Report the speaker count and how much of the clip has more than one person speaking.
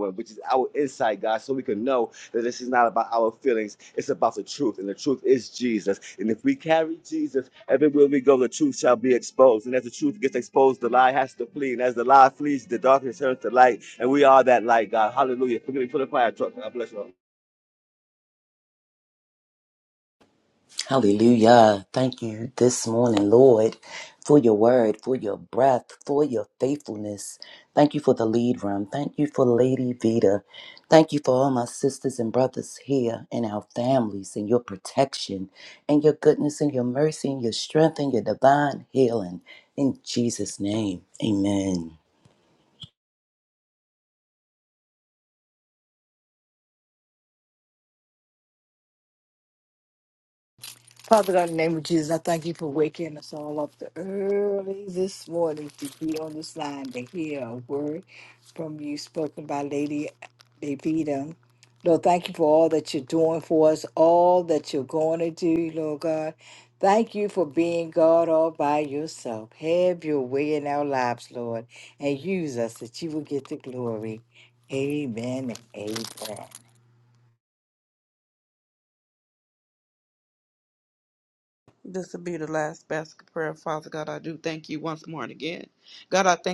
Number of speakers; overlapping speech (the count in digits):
4, no overlap